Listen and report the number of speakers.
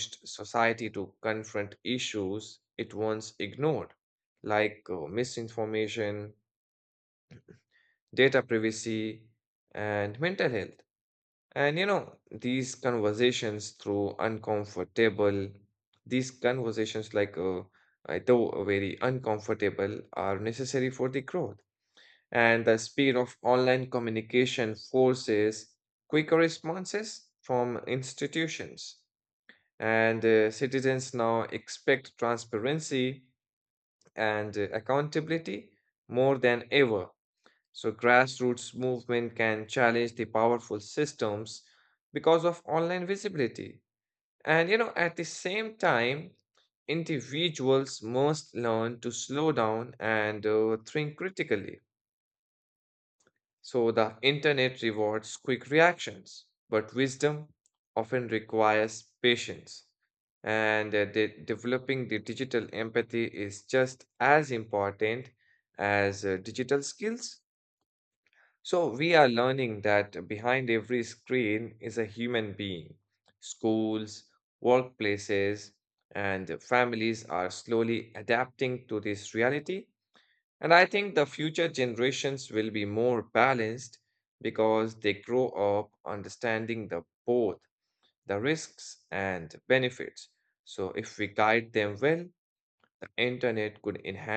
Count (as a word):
one